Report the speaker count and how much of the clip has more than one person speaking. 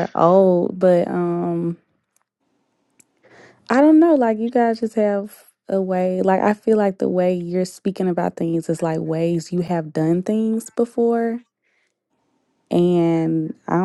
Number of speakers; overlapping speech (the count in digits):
1, no overlap